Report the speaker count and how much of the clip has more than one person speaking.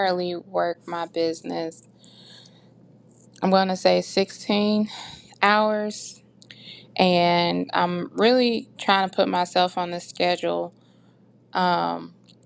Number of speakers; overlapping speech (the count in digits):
1, no overlap